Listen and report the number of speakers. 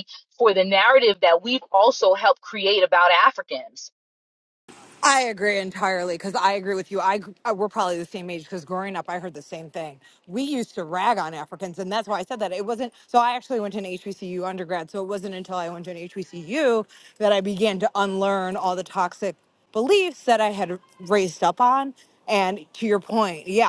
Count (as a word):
two